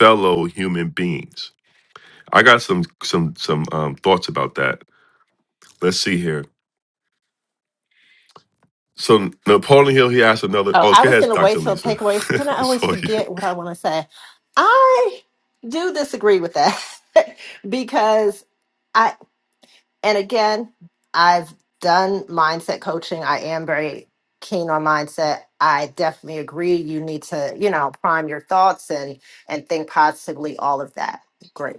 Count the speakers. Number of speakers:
2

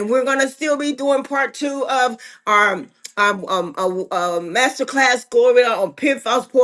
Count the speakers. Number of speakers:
1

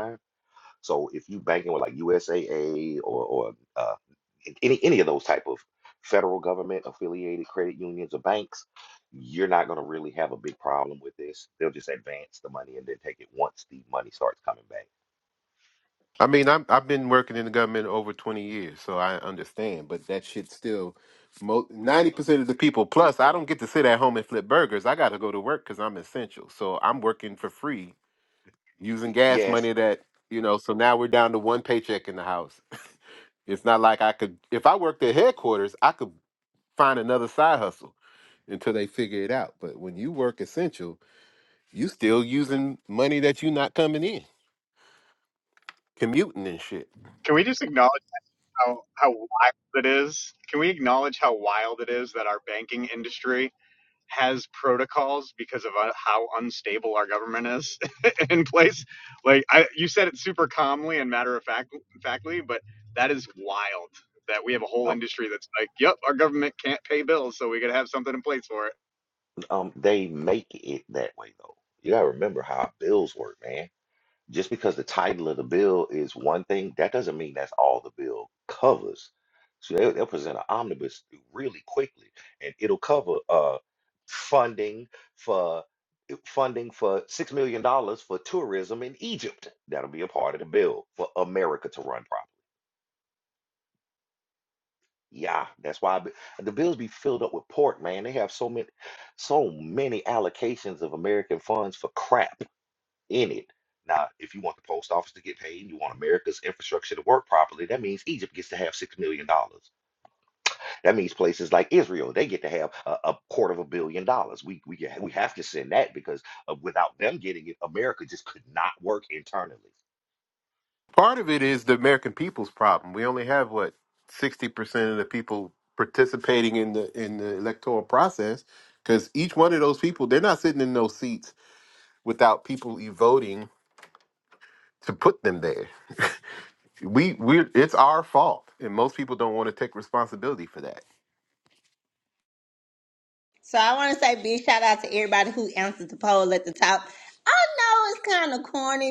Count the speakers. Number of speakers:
4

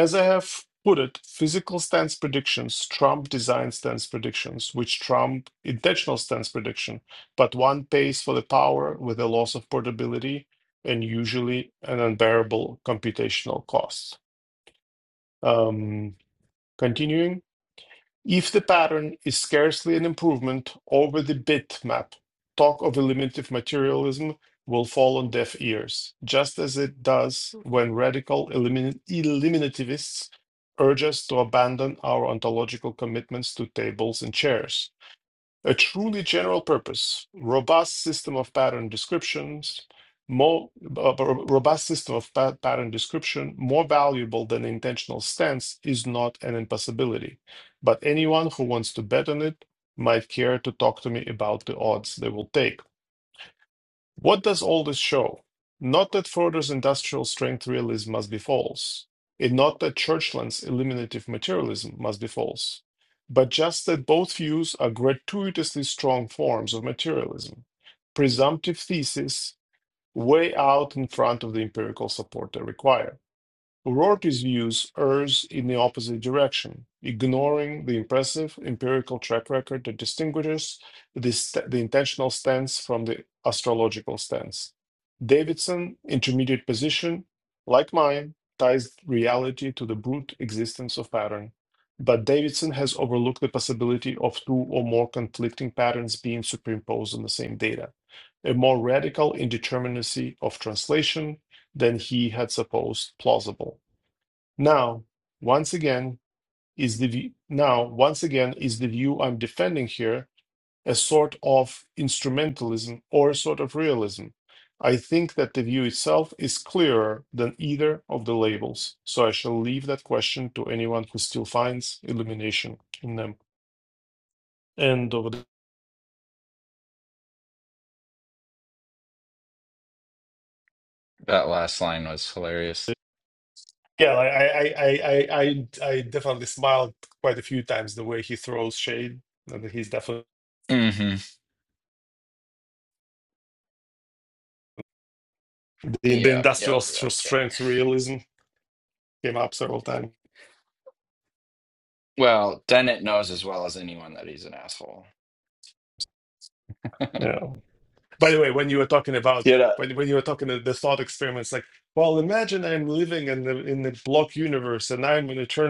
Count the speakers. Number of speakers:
2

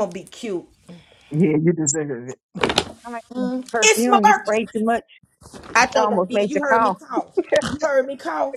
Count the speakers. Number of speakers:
3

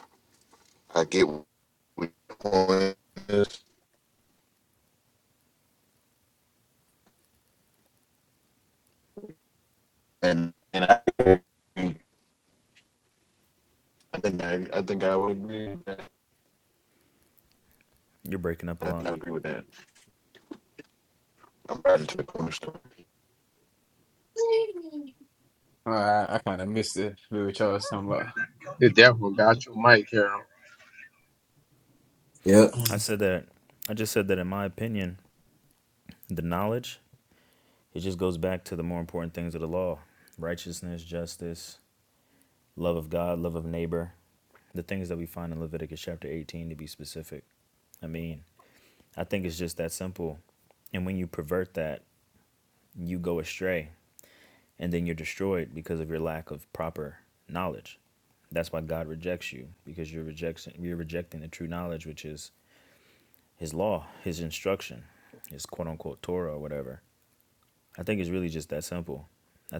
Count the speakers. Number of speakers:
4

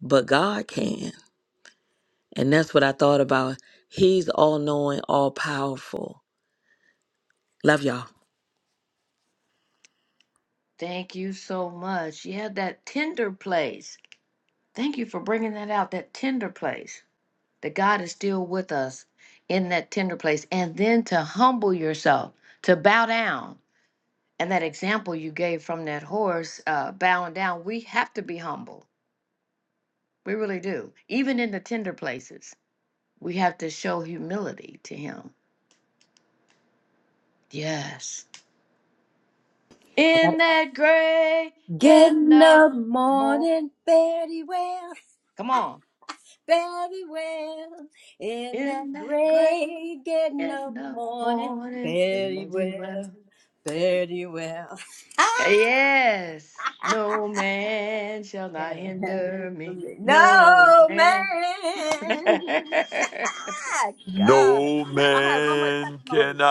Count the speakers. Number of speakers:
4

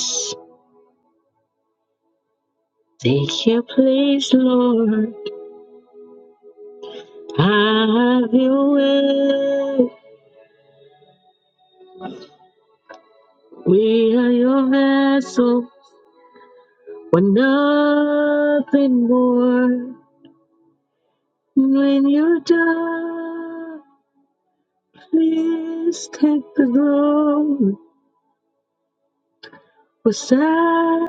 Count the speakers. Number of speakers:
1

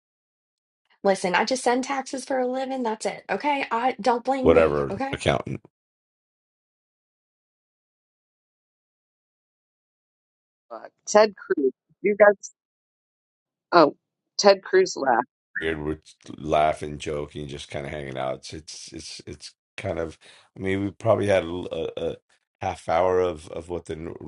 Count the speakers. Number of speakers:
3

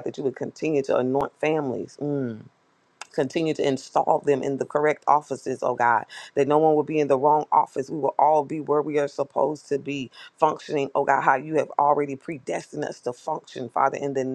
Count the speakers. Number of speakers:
1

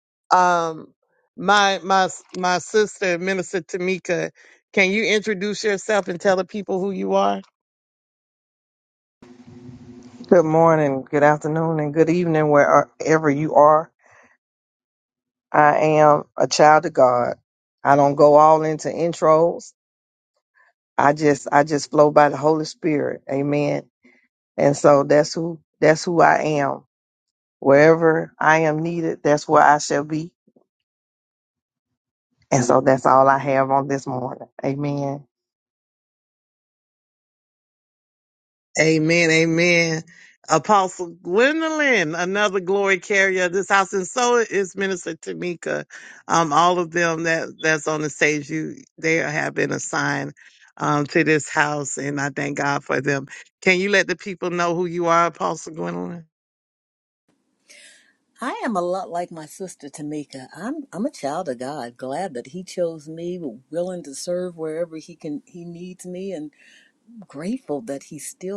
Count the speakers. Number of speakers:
3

